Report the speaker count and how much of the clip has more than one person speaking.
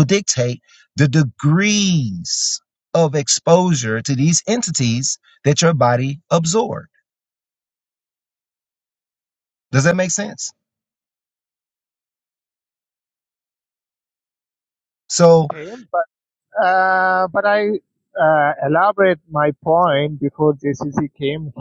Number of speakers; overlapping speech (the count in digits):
2, no overlap